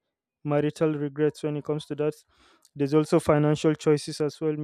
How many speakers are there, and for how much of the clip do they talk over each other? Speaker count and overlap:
one, no overlap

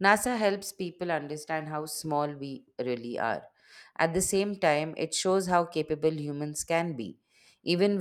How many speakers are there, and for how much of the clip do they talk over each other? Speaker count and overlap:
one, no overlap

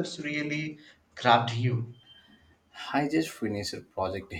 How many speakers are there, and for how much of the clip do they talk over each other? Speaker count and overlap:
two, no overlap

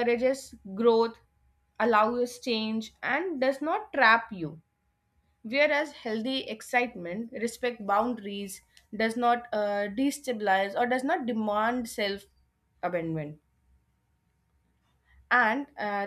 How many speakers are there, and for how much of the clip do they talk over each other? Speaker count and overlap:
one, no overlap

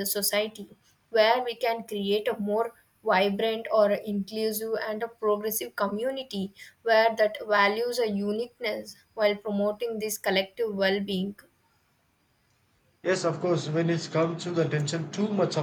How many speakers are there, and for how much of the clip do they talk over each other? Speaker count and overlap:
two, no overlap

